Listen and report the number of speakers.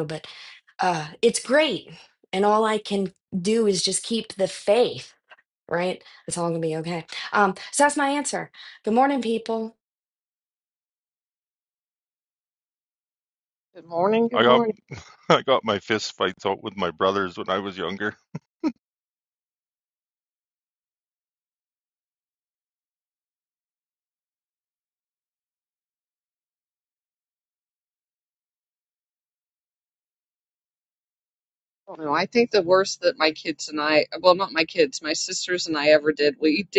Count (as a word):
three